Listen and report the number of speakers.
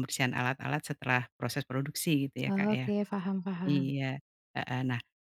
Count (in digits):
2